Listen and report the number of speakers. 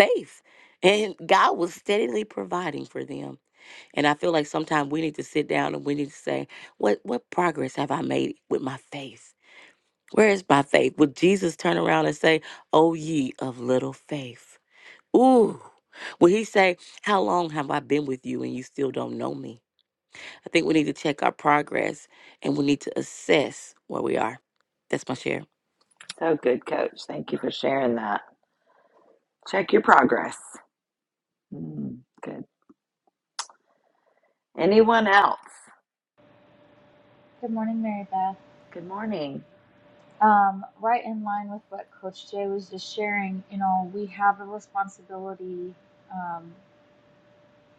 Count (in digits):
3